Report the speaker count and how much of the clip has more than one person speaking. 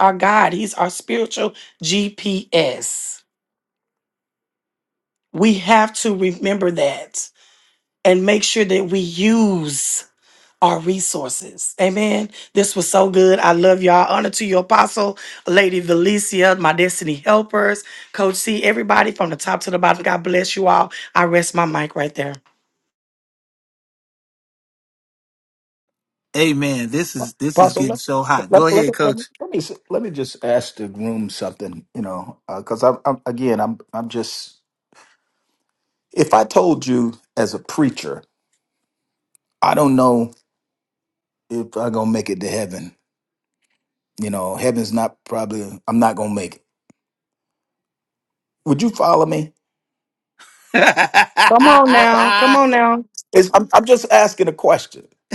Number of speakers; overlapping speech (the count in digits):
3, about 2%